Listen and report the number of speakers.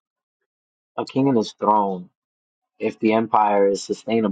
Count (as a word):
one